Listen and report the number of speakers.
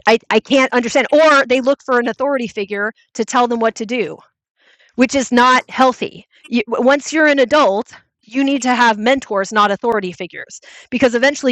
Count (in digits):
1